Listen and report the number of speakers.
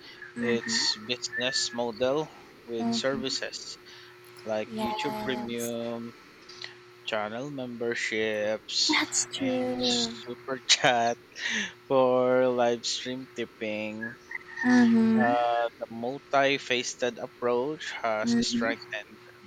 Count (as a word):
two